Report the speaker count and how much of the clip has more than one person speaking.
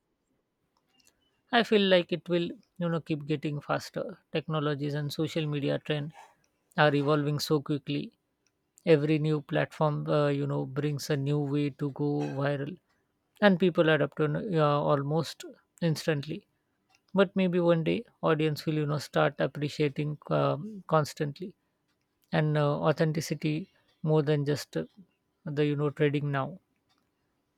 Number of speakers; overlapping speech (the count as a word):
one, no overlap